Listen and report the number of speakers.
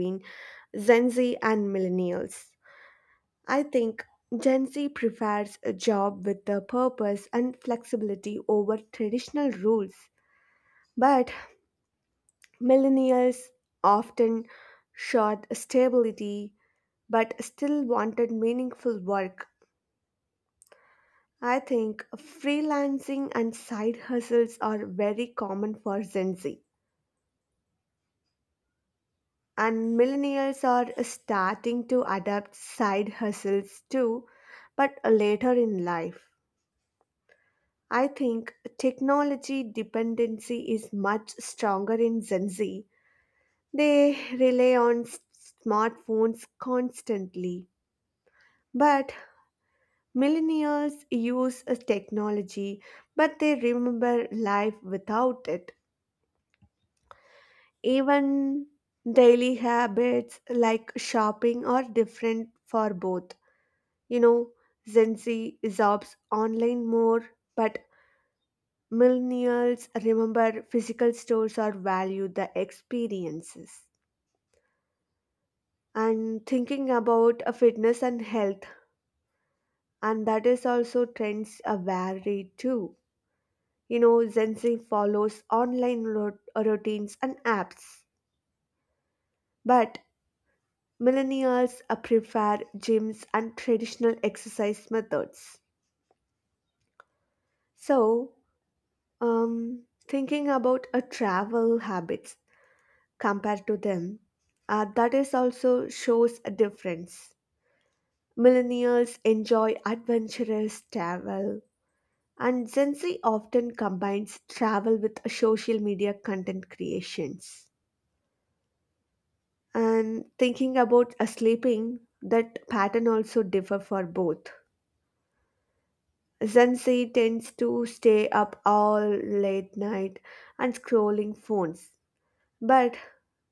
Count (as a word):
one